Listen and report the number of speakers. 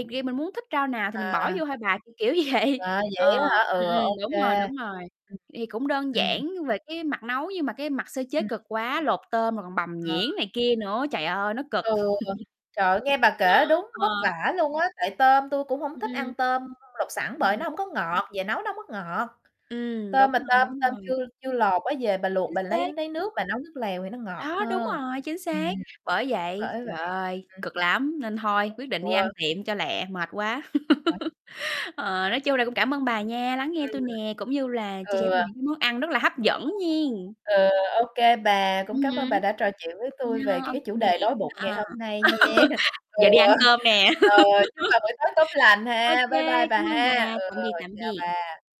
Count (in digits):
2